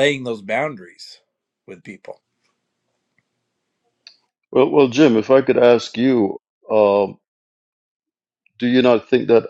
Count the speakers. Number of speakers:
two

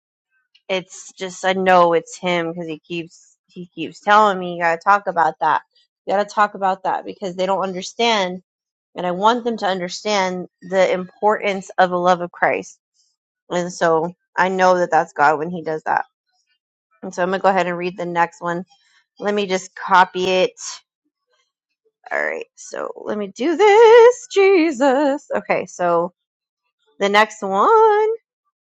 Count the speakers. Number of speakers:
one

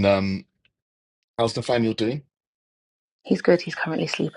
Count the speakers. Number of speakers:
two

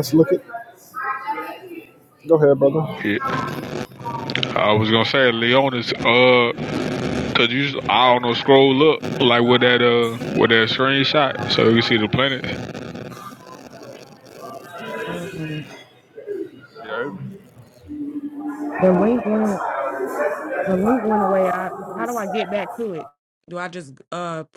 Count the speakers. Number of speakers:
three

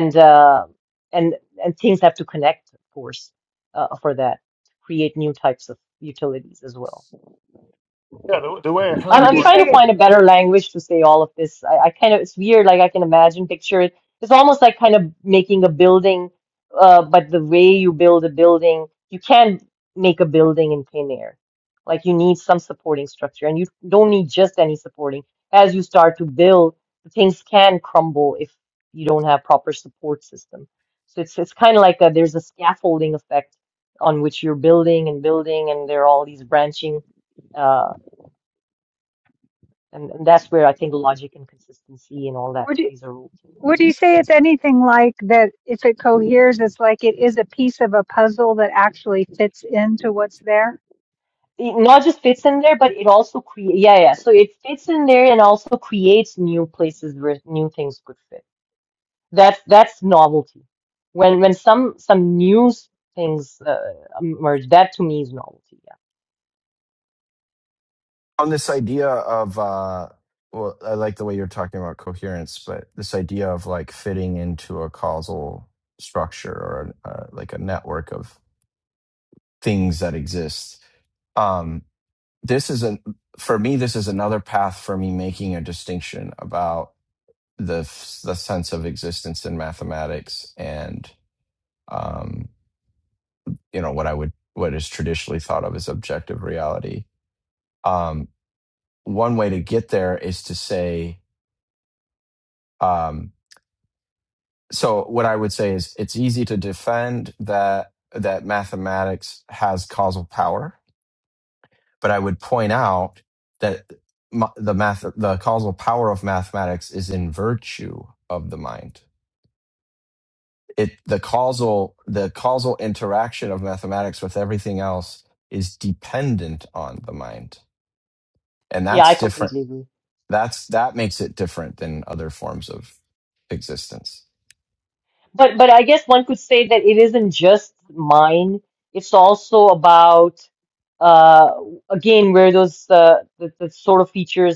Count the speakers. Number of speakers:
four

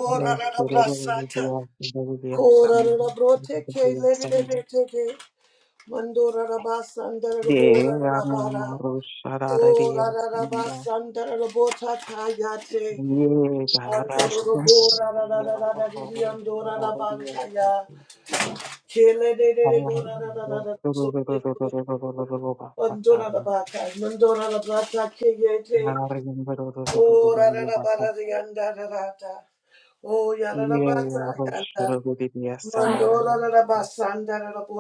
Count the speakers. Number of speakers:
two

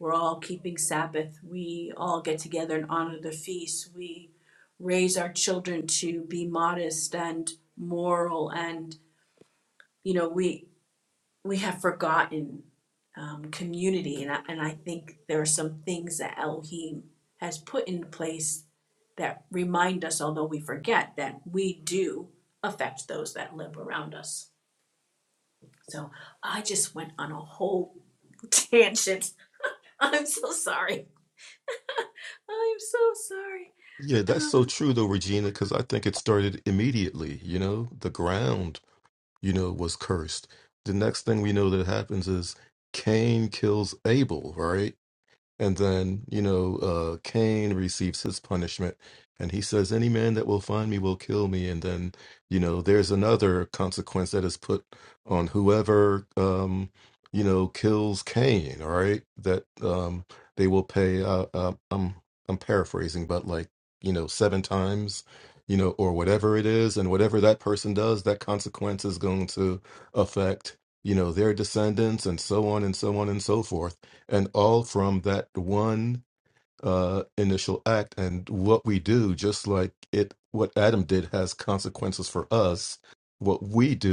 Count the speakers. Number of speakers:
two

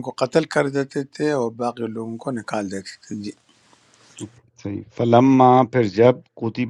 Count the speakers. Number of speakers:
two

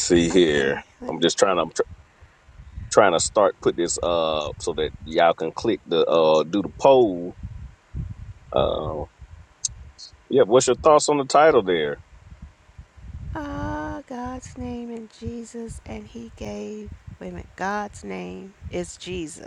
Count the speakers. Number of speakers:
two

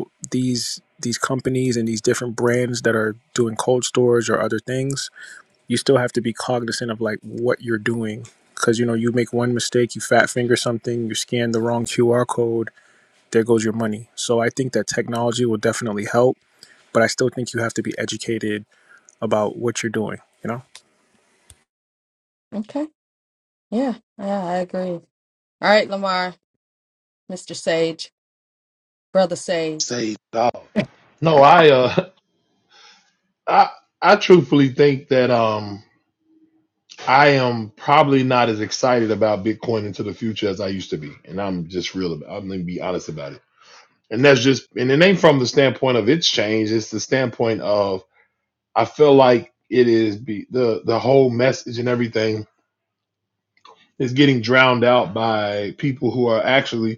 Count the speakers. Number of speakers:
three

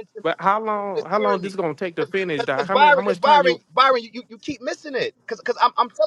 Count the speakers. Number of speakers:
two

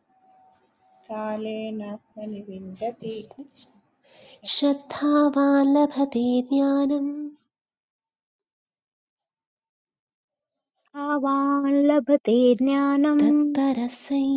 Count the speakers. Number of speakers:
three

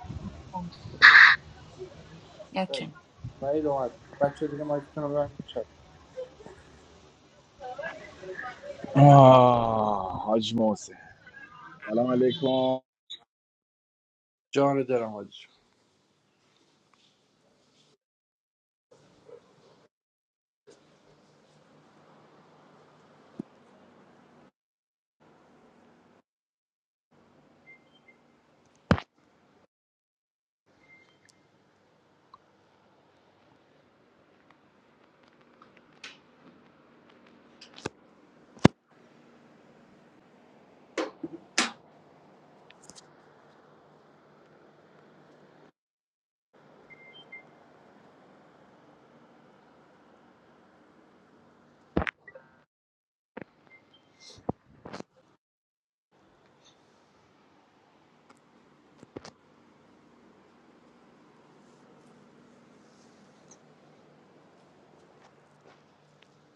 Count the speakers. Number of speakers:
two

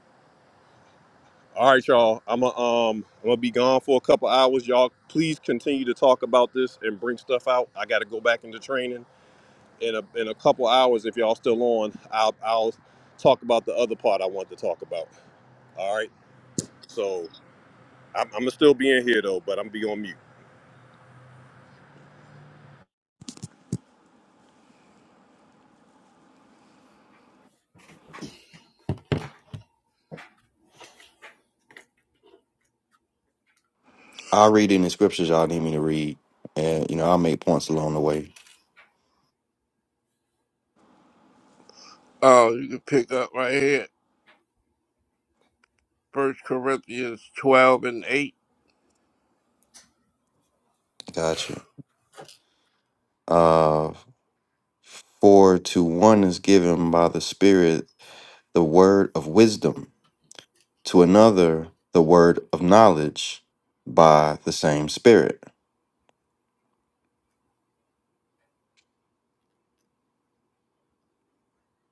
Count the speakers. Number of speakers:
three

